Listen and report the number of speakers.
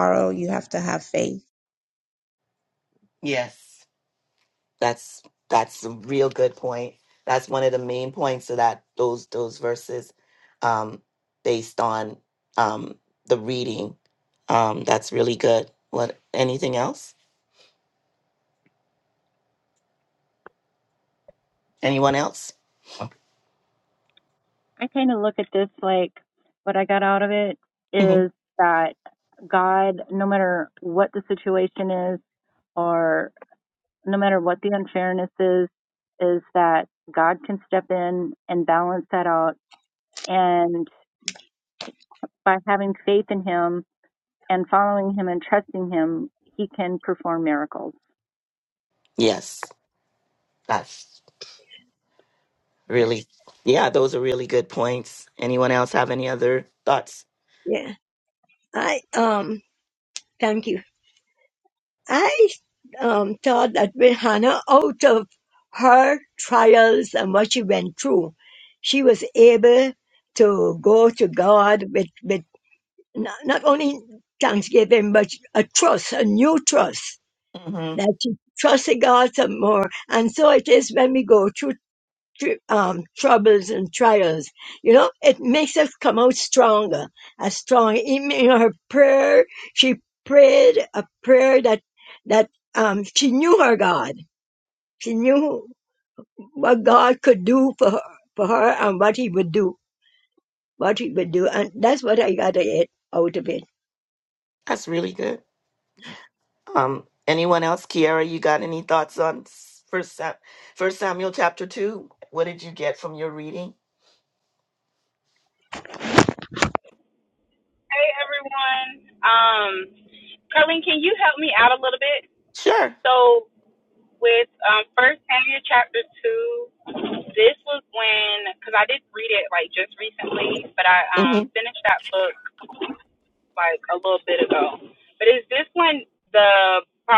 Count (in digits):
5